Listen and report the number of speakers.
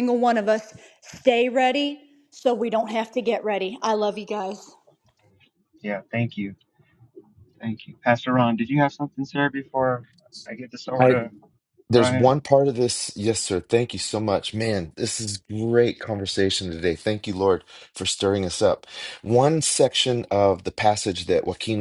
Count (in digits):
3